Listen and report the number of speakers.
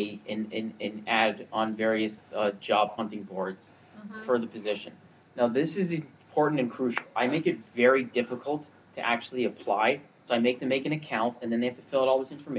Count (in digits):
1